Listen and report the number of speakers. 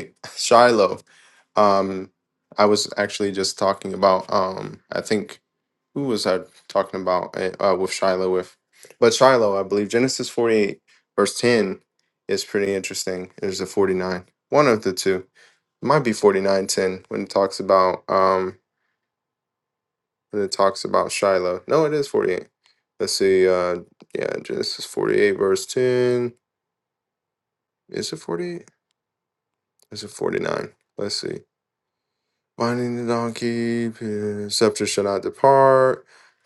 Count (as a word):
one